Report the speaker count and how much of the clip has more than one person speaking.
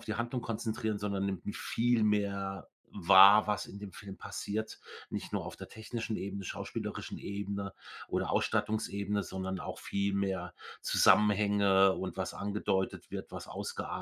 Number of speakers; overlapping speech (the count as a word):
one, no overlap